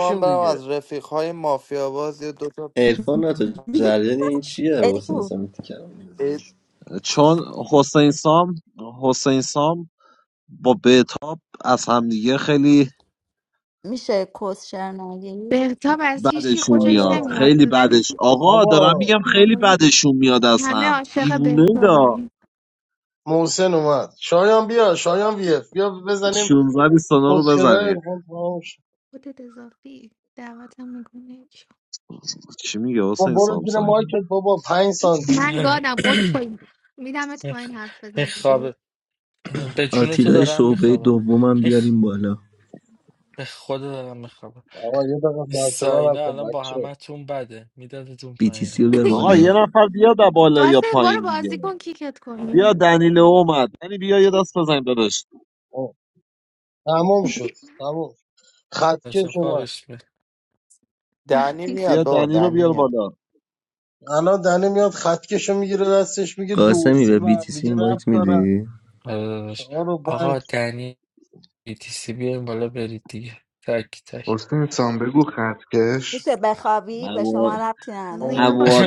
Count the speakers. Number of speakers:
eight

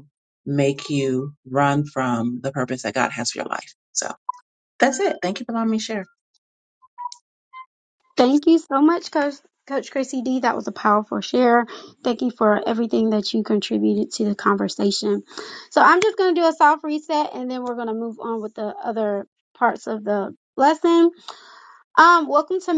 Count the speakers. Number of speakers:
two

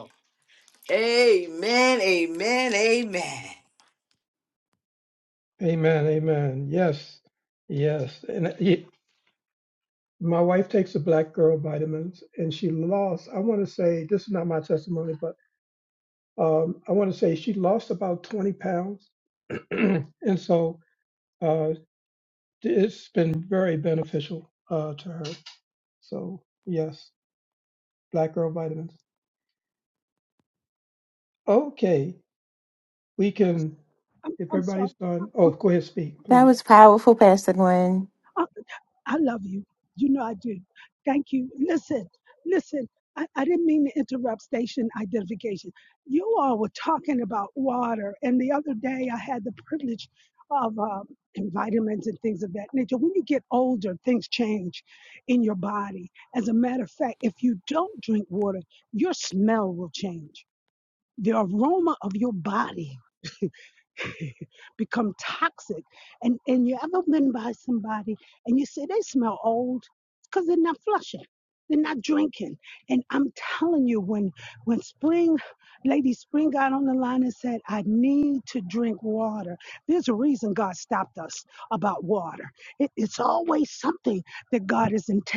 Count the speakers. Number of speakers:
four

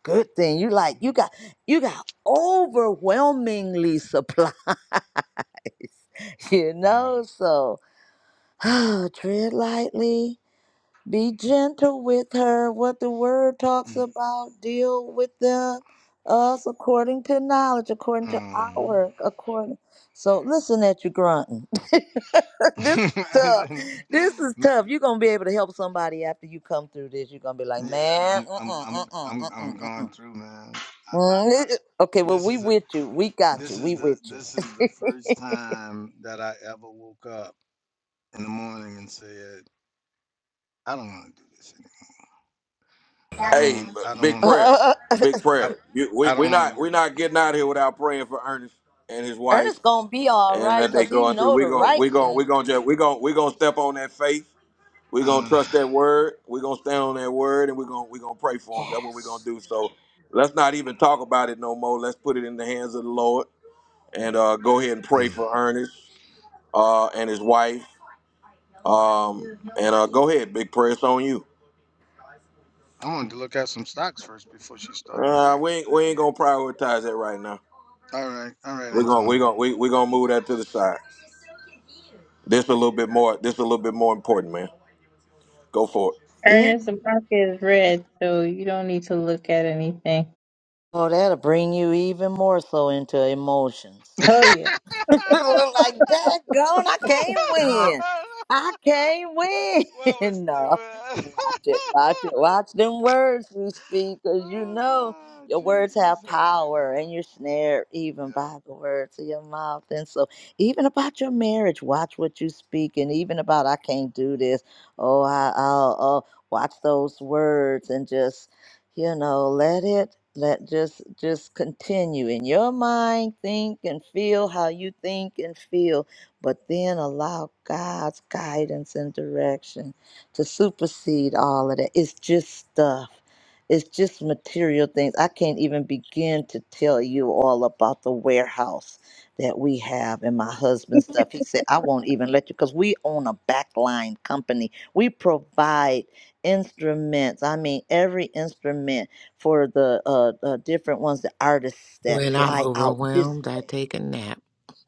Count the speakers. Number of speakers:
five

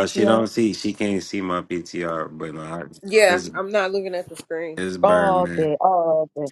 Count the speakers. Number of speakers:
three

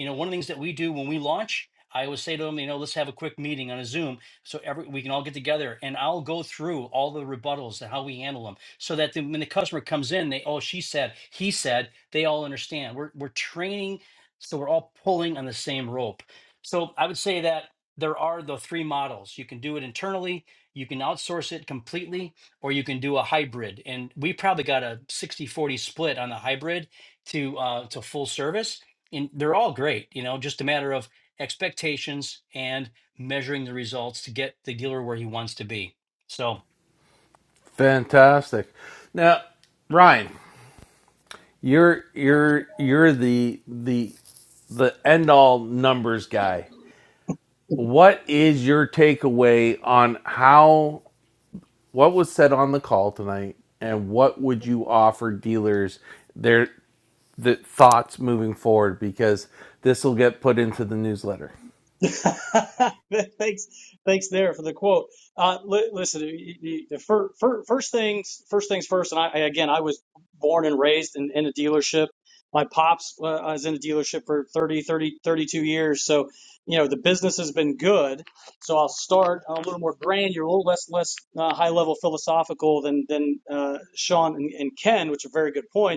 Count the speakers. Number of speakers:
three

